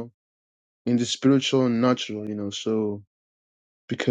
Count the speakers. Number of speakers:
1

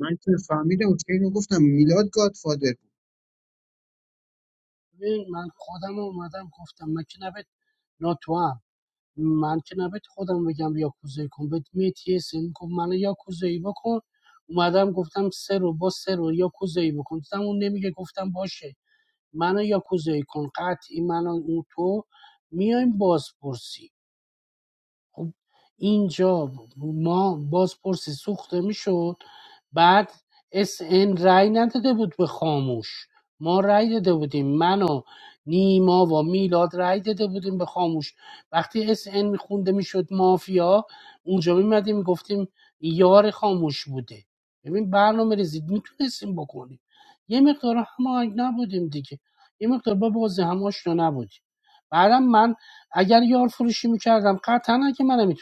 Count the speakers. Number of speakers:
2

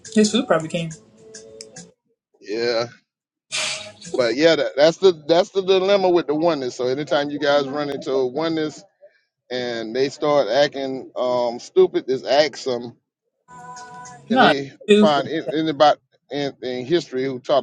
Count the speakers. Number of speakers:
2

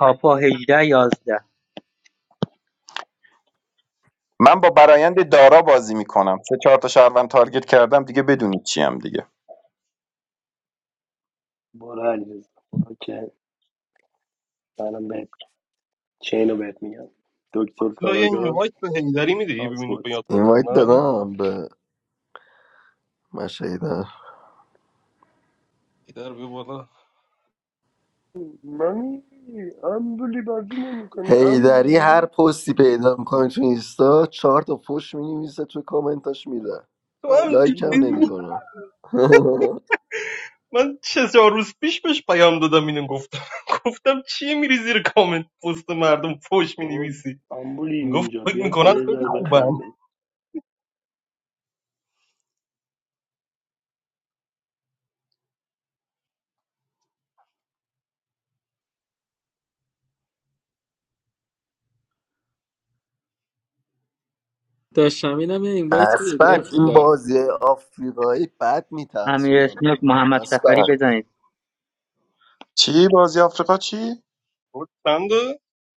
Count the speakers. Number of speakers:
6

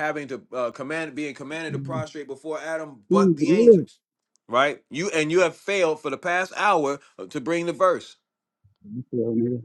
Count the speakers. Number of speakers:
2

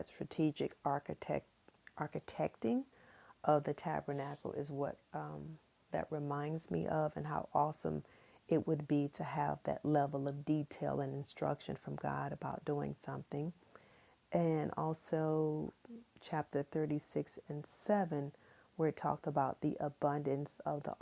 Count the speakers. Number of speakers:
1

